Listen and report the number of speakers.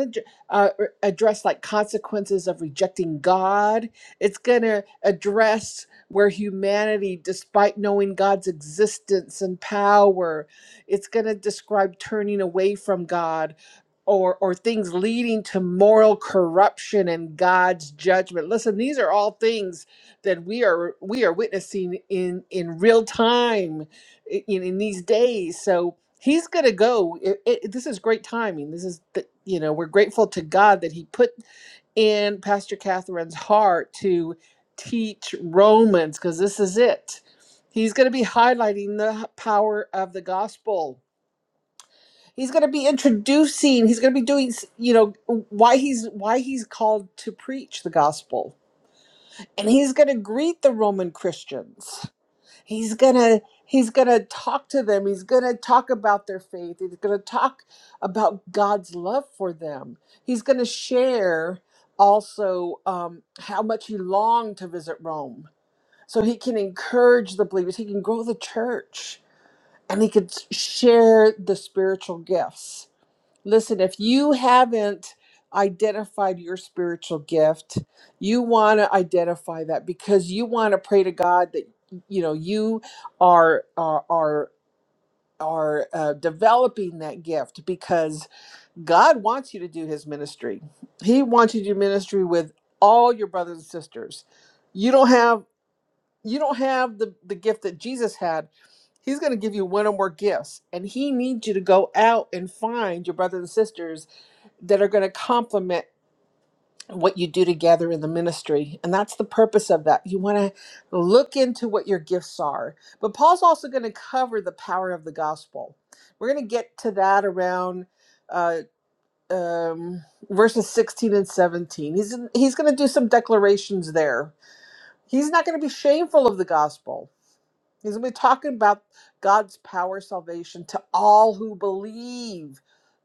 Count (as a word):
one